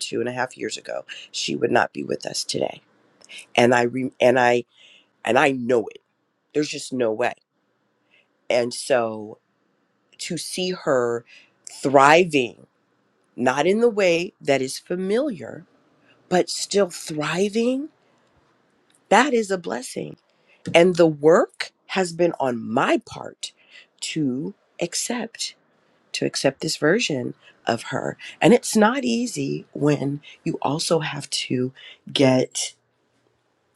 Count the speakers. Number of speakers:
1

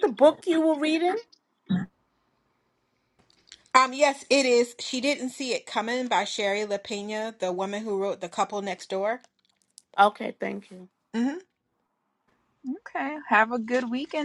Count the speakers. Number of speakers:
3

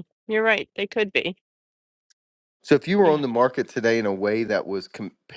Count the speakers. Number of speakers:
2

